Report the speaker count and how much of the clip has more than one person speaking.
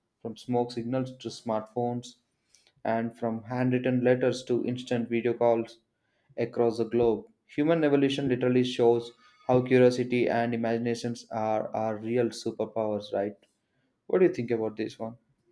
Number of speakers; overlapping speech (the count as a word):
one, no overlap